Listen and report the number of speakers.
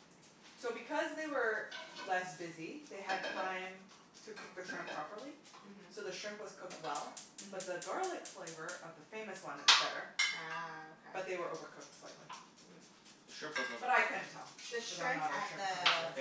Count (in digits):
3